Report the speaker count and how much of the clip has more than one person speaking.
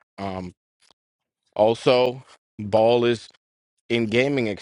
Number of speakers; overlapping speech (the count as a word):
one, no overlap